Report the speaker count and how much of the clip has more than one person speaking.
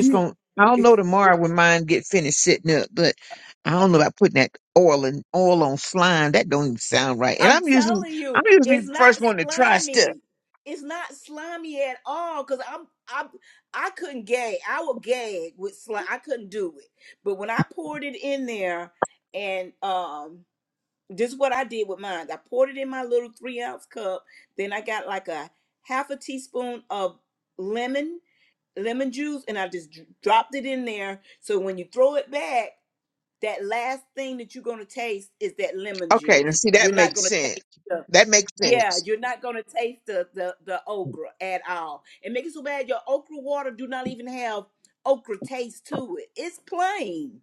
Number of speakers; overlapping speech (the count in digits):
2, about 8%